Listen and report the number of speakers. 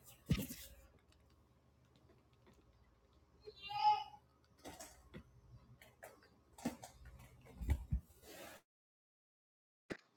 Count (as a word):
zero